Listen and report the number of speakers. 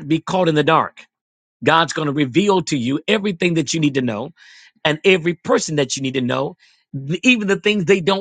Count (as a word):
one